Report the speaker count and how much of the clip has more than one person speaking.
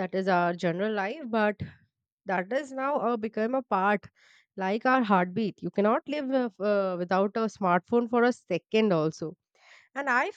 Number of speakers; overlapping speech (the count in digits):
1, no overlap